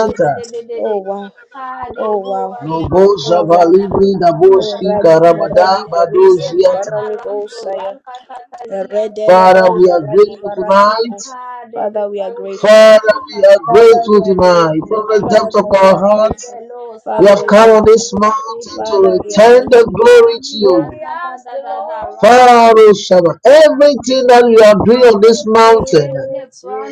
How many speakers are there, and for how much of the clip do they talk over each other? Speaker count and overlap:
3, about 72%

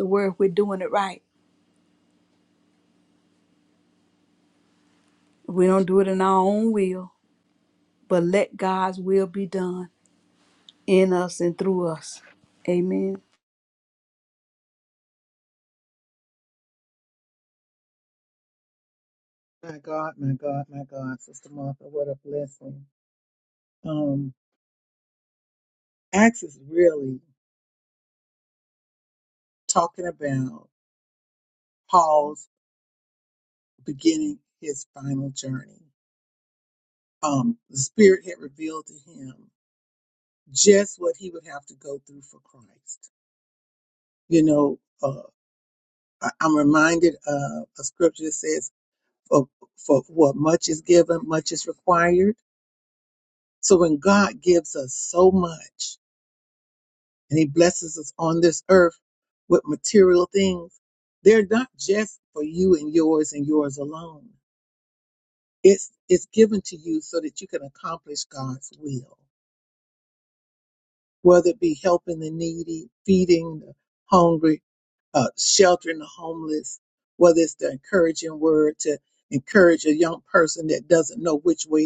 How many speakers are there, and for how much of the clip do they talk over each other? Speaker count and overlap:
2, no overlap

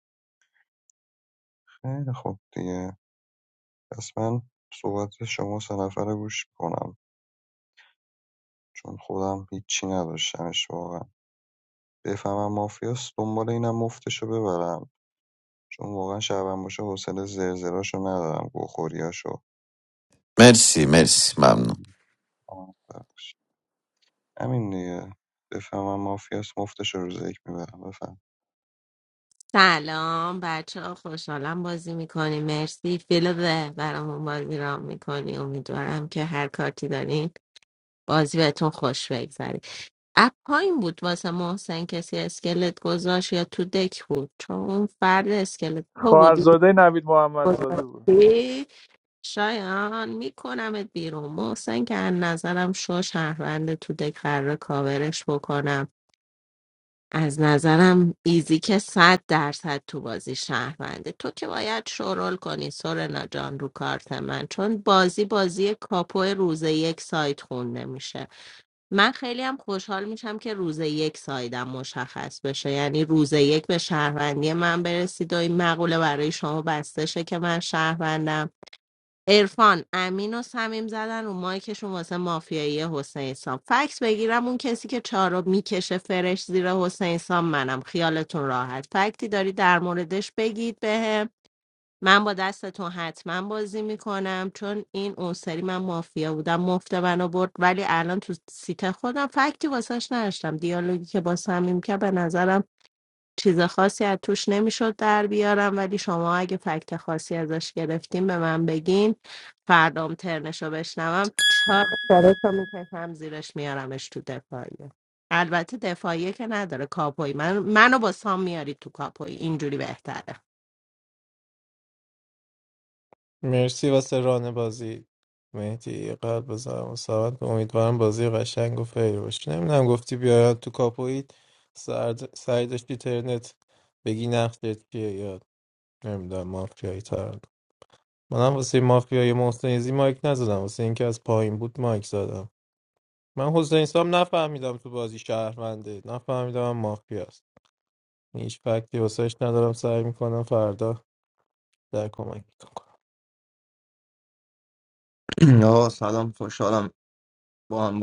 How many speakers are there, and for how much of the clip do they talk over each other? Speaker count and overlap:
6, about 1%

